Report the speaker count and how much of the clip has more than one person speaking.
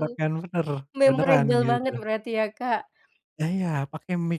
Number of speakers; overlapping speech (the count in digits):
2, about 23%